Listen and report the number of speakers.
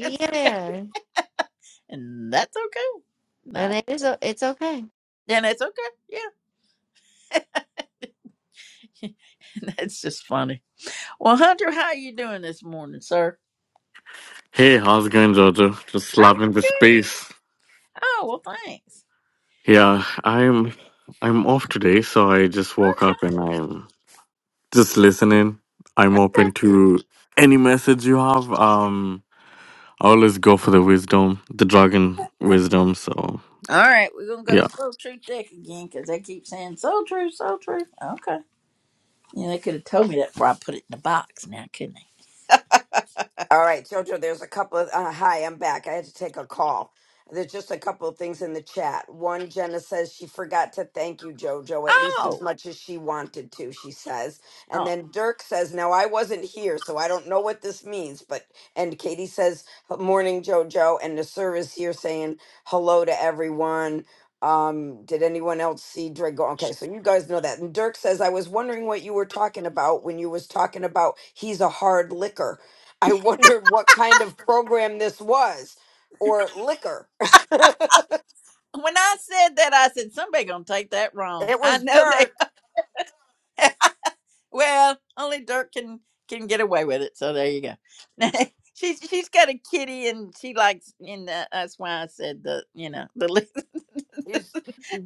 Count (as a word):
four